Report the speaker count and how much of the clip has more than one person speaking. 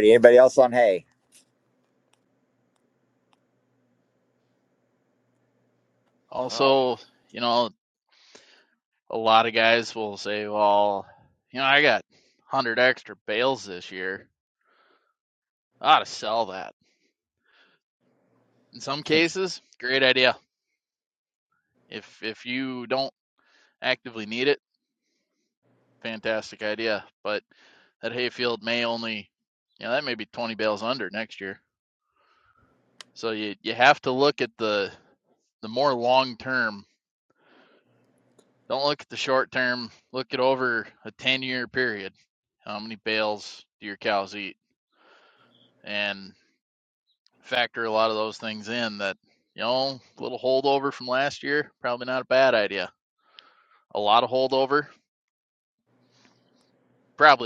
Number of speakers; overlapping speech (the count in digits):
2, about 1%